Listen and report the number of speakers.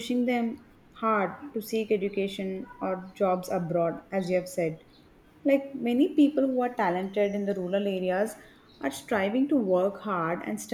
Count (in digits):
1